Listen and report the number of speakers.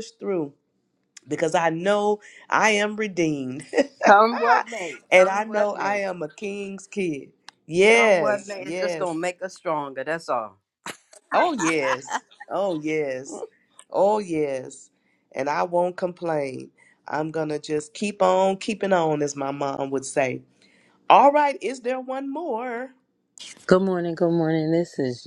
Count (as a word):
three